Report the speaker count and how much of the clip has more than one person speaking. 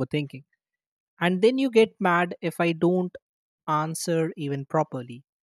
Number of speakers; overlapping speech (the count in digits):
1, no overlap